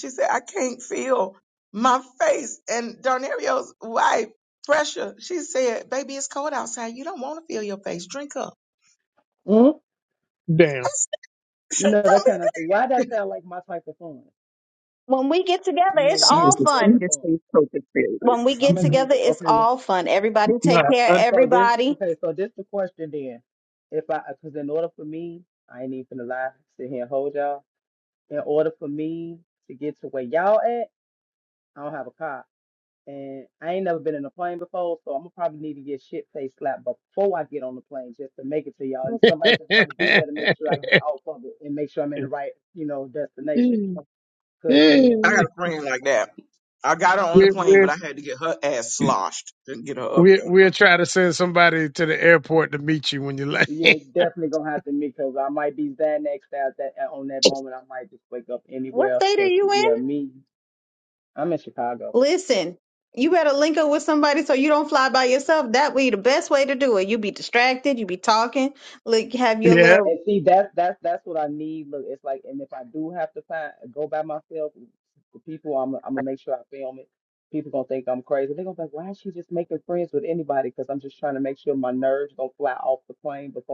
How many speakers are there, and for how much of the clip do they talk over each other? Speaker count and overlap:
5, about 8%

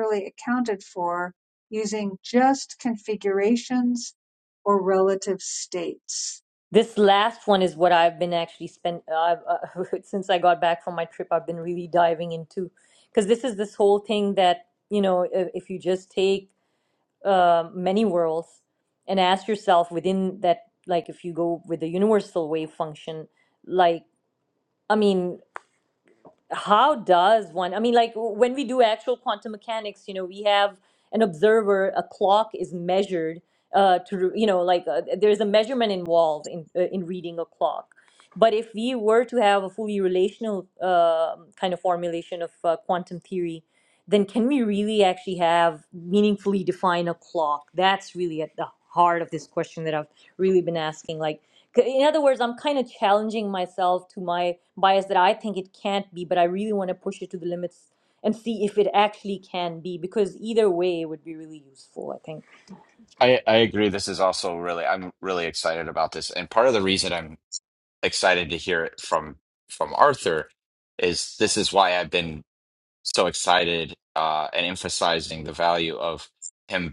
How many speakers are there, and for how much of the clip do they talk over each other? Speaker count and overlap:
3, no overlap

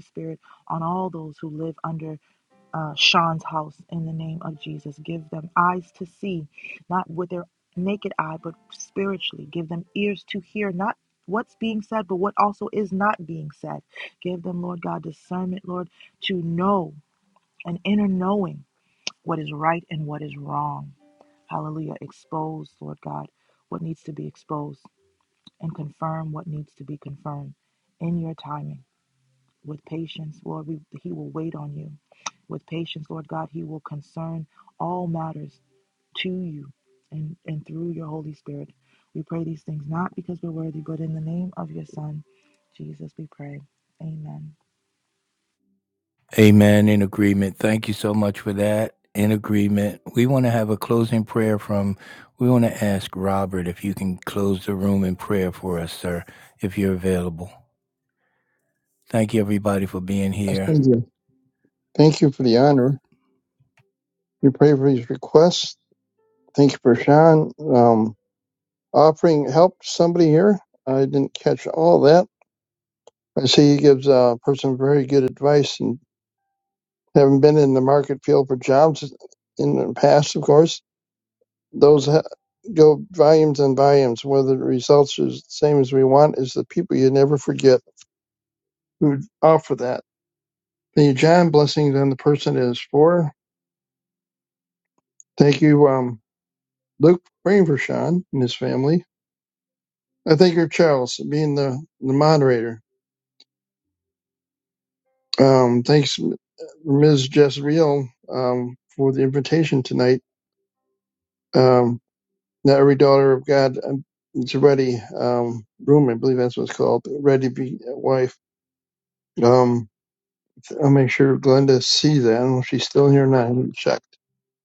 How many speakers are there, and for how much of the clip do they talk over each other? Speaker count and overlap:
3, under 1%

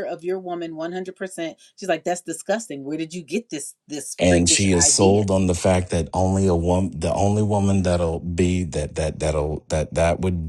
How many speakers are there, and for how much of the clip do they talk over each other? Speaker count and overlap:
2, about 10%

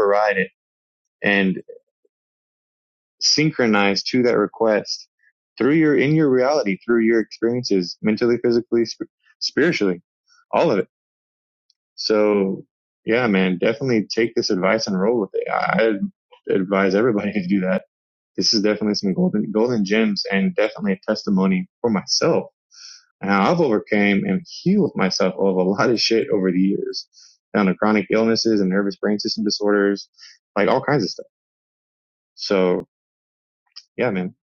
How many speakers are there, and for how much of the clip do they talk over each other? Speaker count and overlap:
1, no overlap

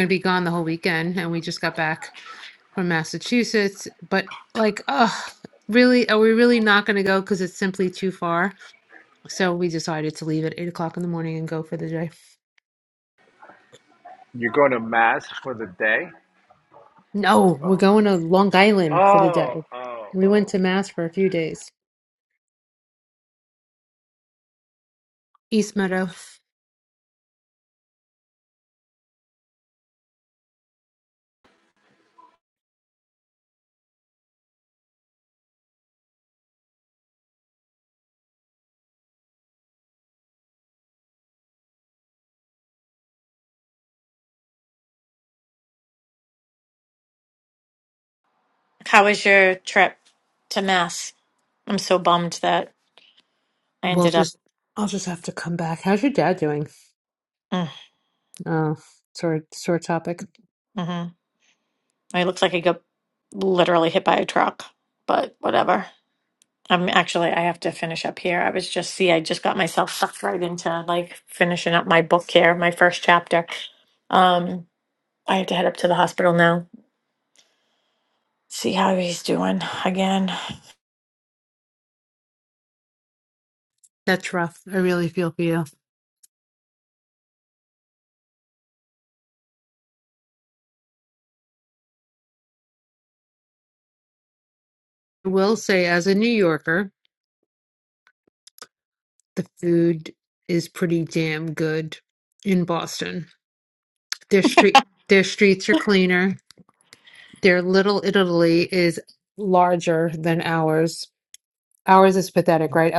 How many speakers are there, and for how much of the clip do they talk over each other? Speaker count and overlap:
3, about 2%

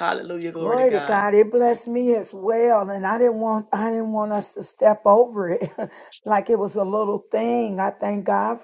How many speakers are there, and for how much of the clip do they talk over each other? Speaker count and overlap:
2, about 7%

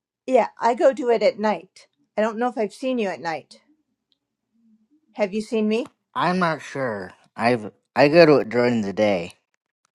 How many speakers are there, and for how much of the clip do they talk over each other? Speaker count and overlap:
2, no overlap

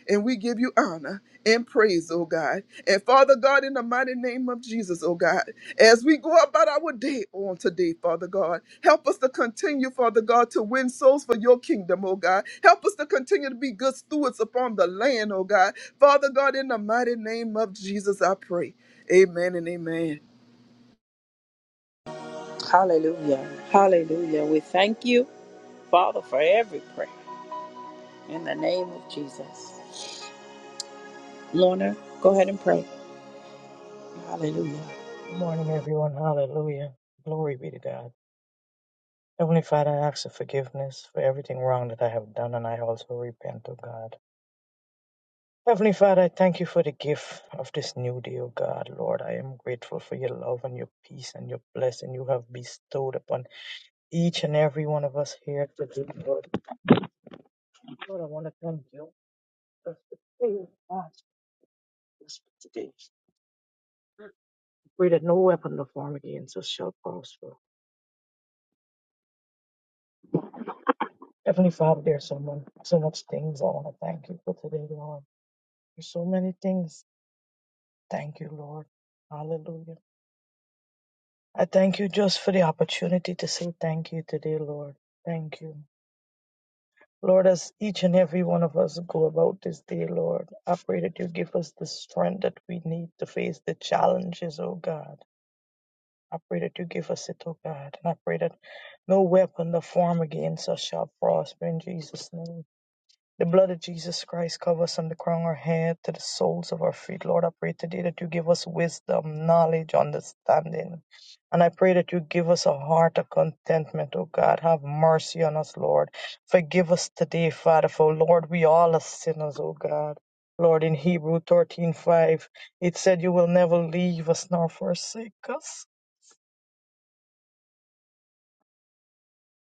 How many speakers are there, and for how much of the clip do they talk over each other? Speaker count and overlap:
3, no overlap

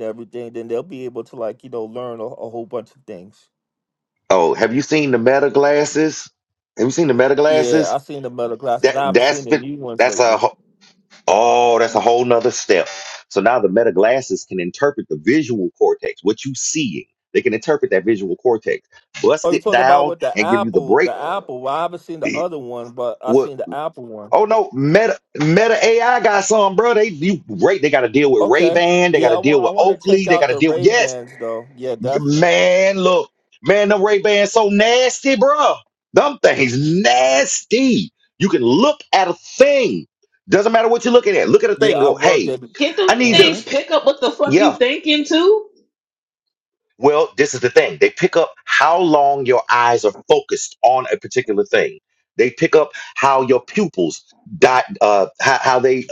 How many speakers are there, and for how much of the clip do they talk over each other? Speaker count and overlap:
3, about 14%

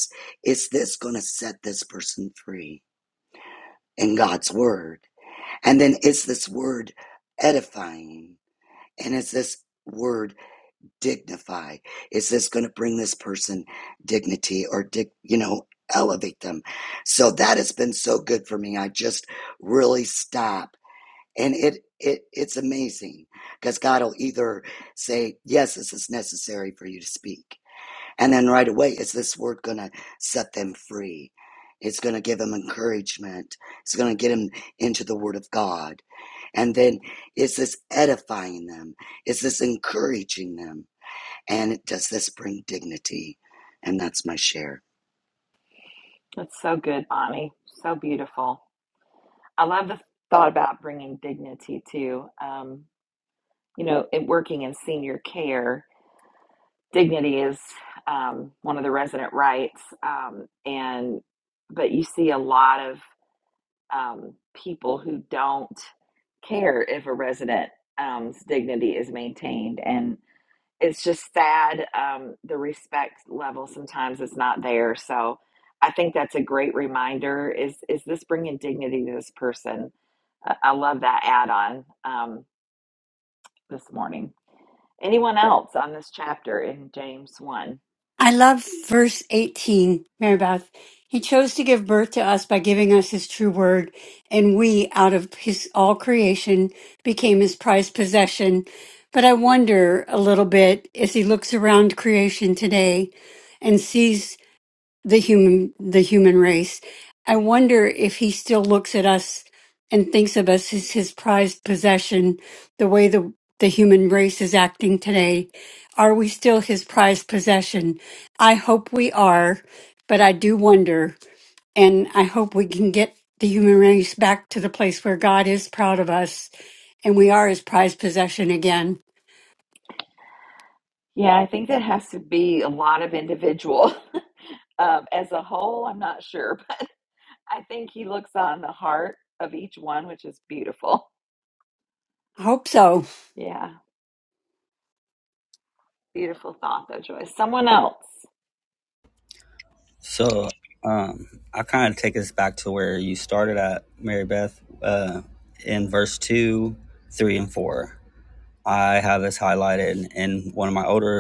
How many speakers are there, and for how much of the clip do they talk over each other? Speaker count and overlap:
4, no overlap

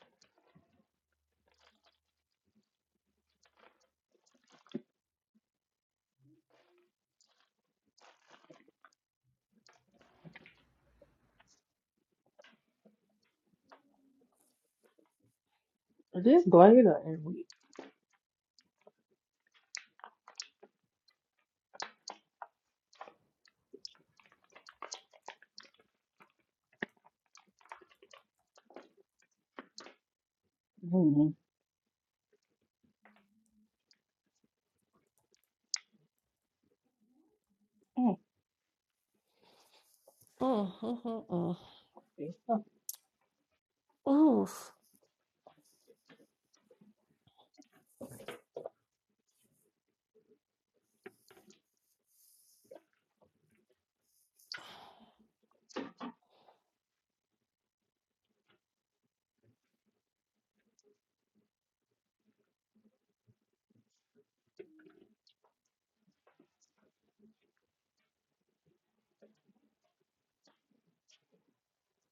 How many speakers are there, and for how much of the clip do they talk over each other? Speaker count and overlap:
2, no overlap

